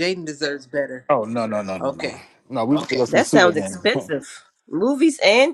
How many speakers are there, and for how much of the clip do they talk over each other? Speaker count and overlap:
3, about 21%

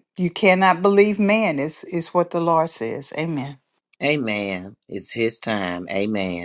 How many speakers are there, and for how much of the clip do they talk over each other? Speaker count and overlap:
2, no overlap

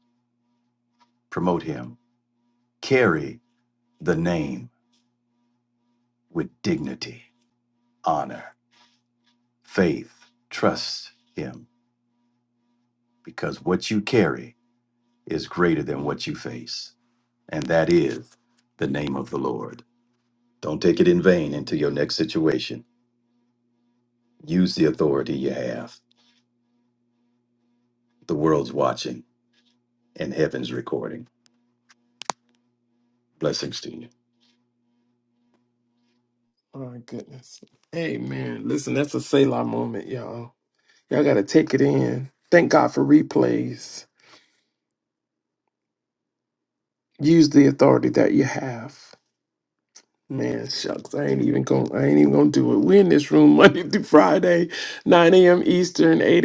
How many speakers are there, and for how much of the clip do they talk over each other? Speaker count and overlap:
2, no overlap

